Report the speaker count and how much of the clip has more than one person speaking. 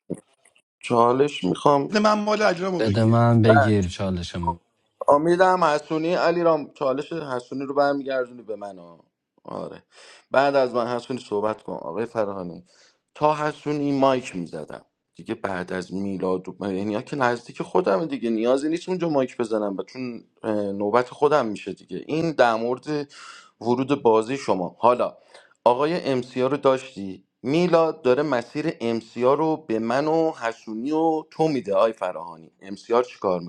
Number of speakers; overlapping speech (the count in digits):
3, about 1%